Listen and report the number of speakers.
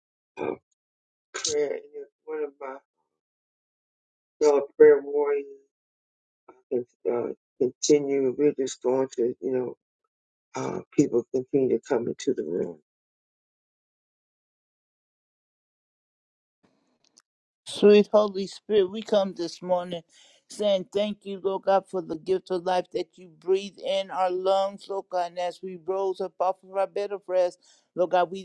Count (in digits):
2